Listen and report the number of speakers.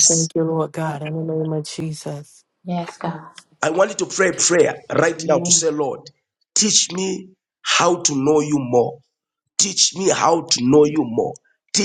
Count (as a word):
three